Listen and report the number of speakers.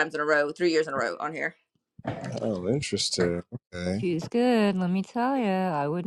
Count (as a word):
three